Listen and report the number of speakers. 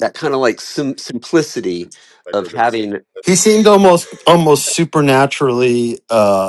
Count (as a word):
two